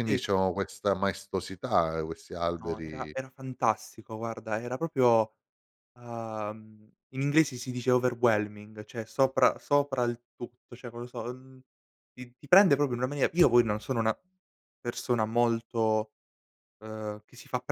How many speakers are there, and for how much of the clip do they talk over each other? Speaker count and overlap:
2, about 4%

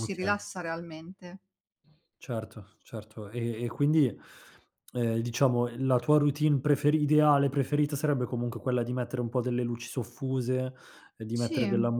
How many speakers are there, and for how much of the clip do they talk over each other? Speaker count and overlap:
2, about 7%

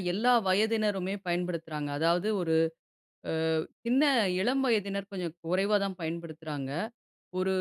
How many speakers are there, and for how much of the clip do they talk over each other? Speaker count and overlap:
1, no overlap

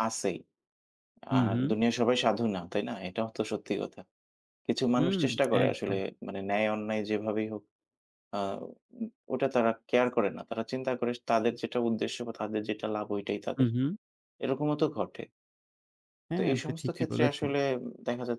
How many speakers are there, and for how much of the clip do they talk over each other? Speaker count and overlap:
2, about 13%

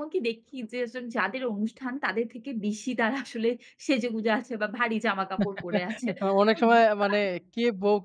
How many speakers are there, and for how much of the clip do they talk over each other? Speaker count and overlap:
2, about 2%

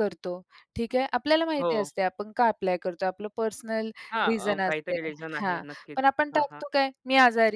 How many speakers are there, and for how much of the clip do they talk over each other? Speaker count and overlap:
2, about 22%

